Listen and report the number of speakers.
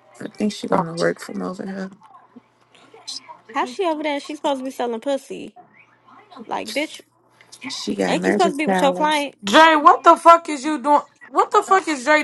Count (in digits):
3